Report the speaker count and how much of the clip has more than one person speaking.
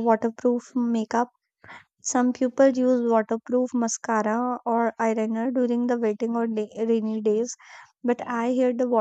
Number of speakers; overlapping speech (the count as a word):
one, no overlap